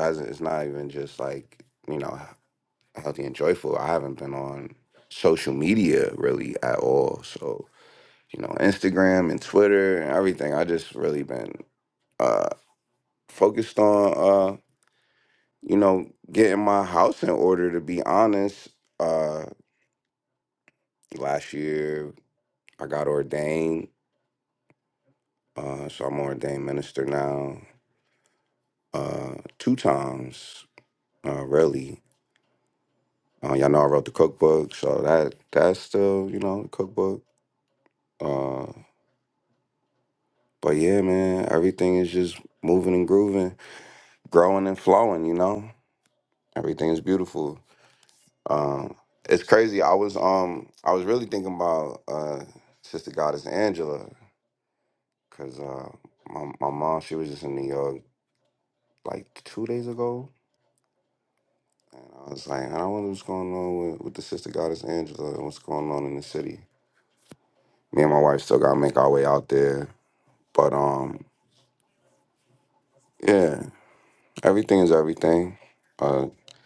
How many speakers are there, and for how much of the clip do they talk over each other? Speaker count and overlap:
one, no overlap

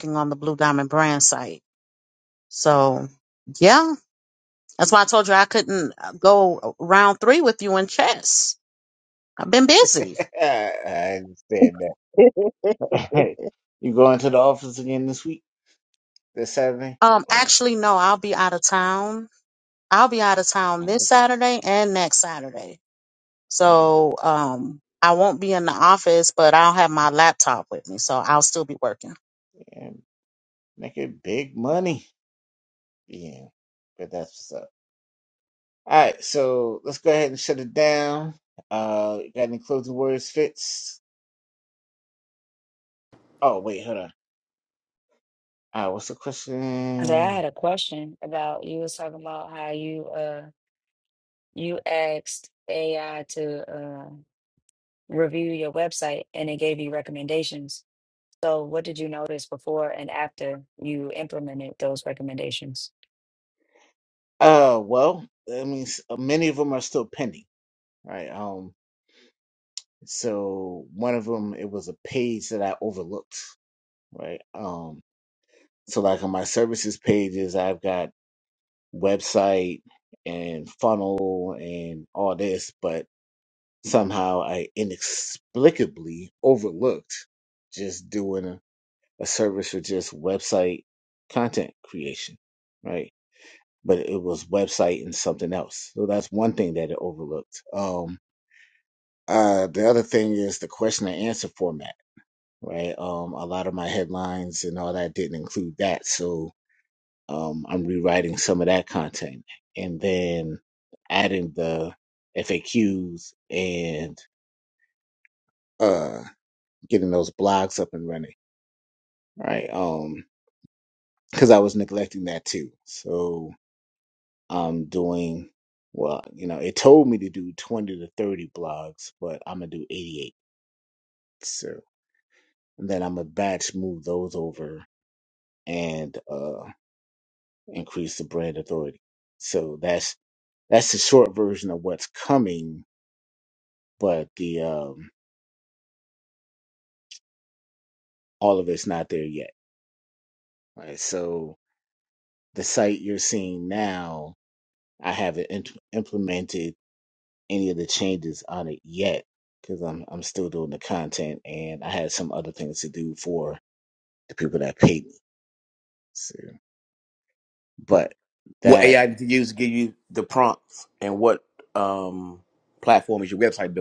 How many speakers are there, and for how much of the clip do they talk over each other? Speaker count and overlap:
four, under 1%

